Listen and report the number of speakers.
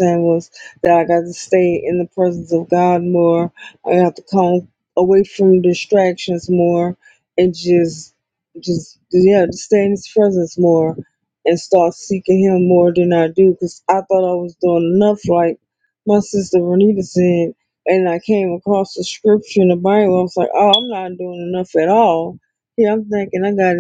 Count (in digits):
1